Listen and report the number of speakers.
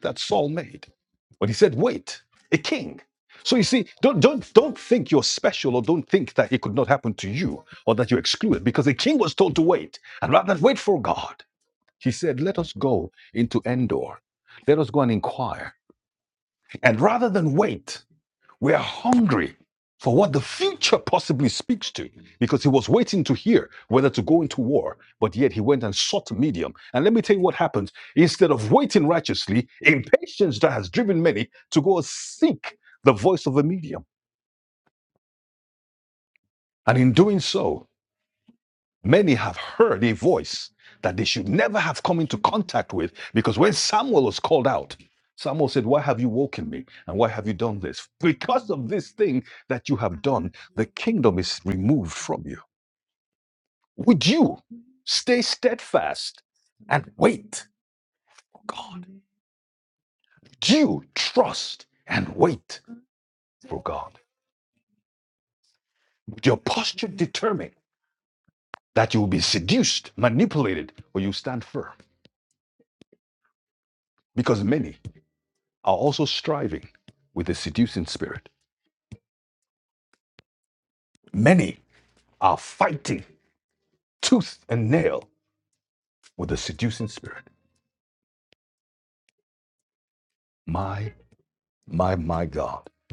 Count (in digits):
1